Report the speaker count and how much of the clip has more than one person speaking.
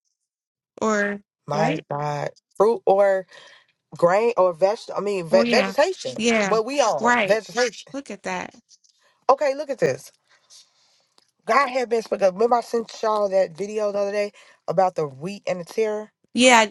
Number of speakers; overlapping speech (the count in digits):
2, about 9%